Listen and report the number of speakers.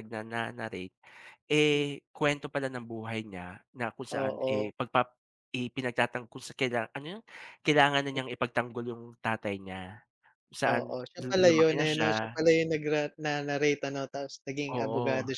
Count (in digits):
2